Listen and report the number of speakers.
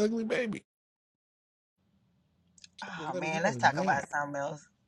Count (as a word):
two